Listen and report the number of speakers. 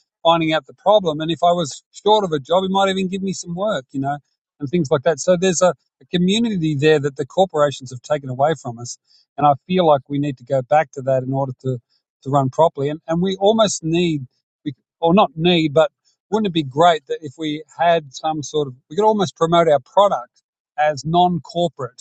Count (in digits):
1